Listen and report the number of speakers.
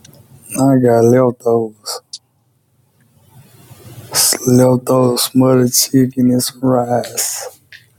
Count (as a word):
one